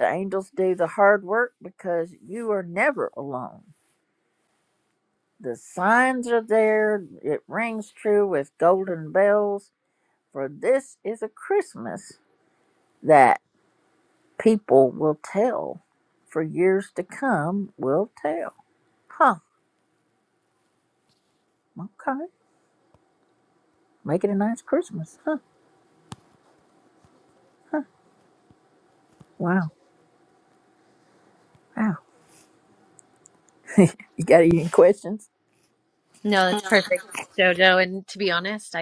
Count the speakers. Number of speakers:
two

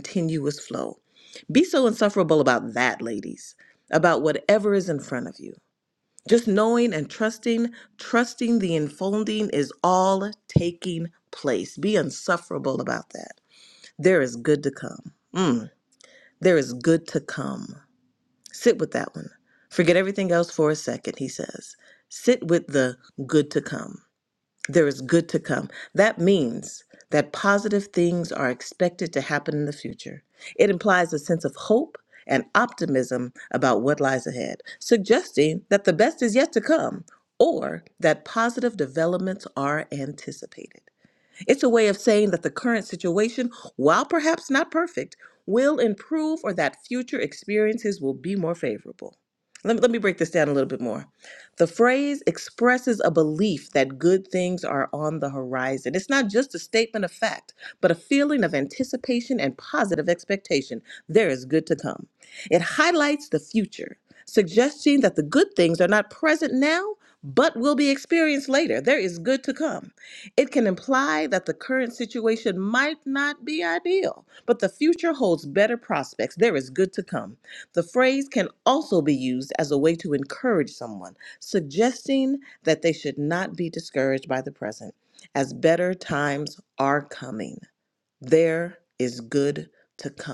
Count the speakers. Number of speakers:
one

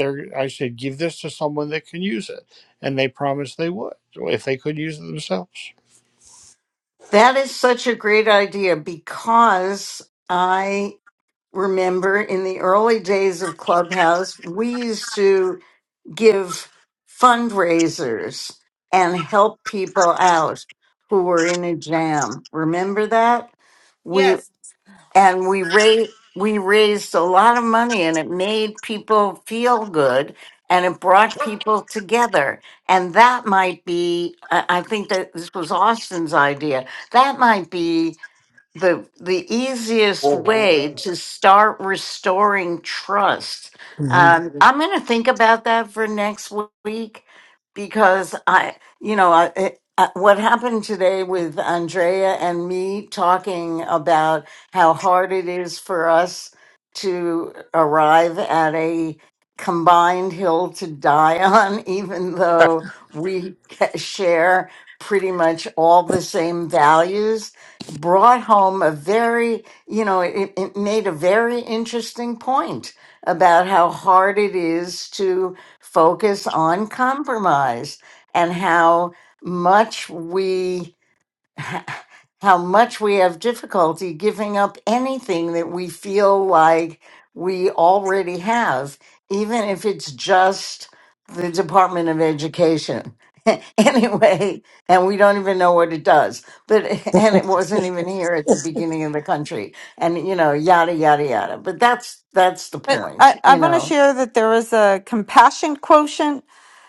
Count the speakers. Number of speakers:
three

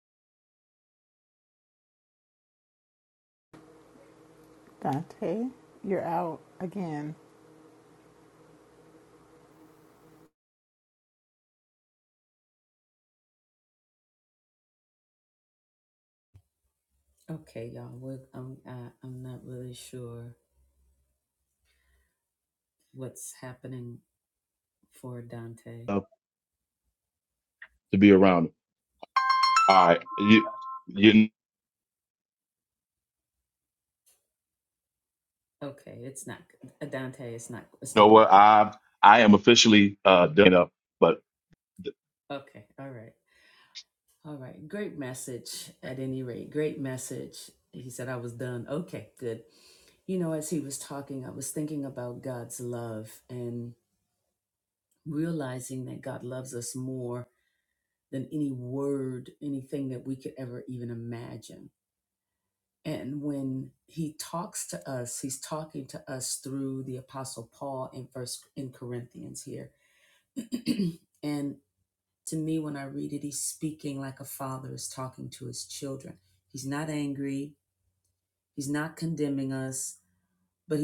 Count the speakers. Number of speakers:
three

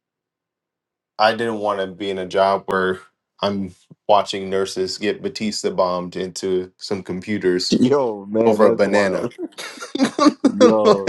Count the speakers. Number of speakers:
two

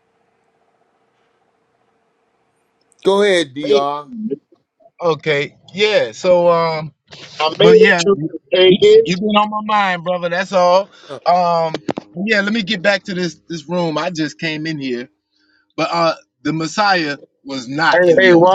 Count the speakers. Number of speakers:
three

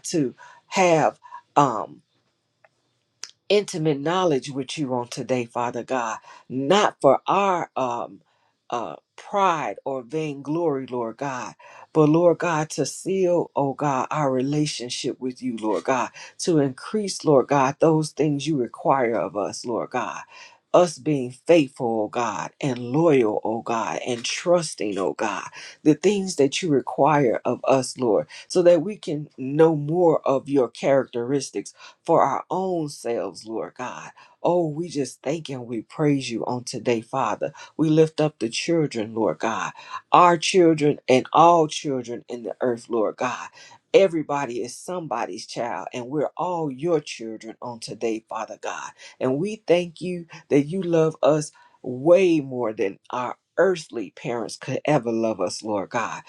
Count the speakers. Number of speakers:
one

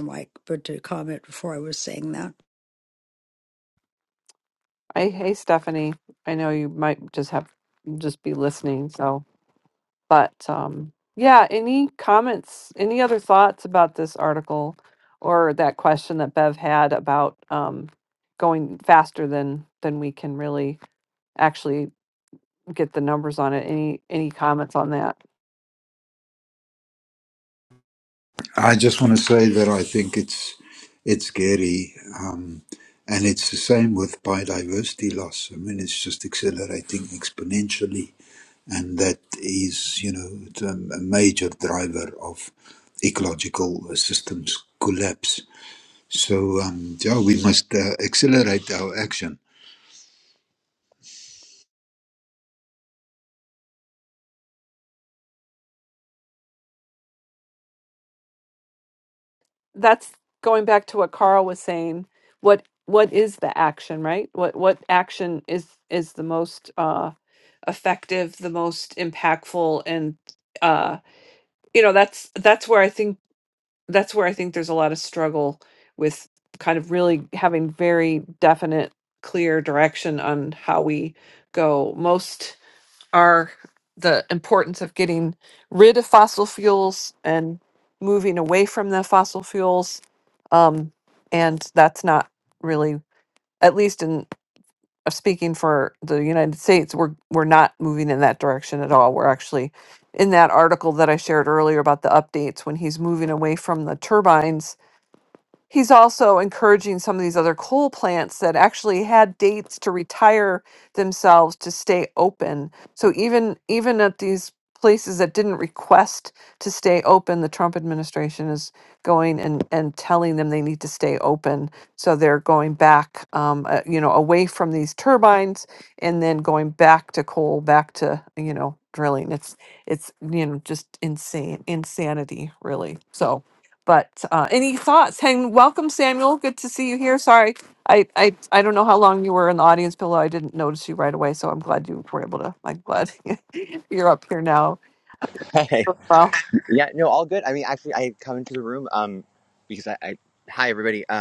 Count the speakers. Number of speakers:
four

